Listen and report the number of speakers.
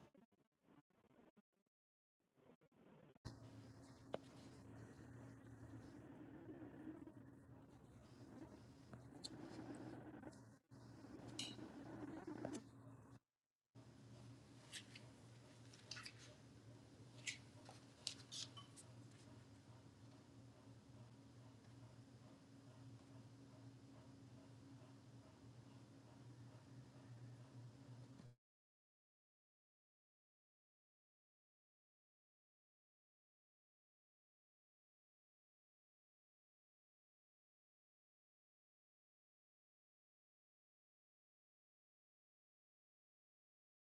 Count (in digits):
0